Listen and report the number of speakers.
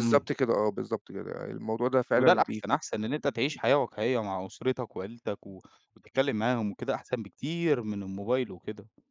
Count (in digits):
2